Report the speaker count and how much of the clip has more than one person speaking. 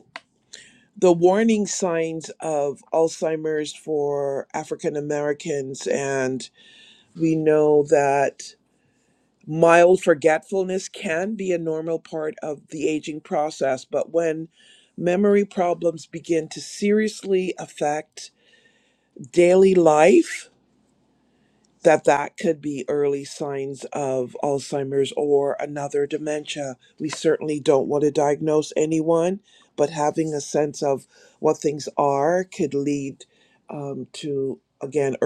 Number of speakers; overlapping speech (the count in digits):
1, no overlap